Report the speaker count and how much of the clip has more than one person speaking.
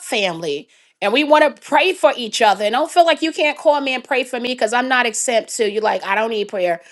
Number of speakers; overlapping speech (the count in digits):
1, no overlap